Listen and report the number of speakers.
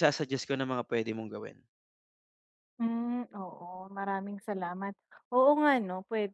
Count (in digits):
2